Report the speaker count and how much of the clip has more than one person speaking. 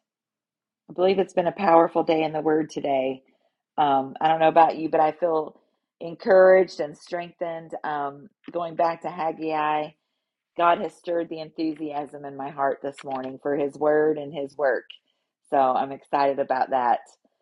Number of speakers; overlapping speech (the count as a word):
one, no overlap